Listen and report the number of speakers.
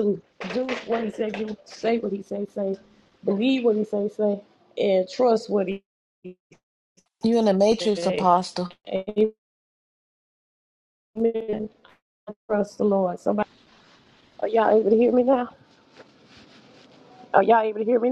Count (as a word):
two